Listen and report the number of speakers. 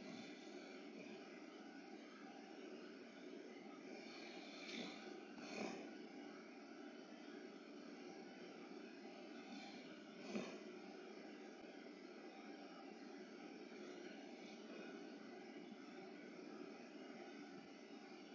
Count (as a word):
zero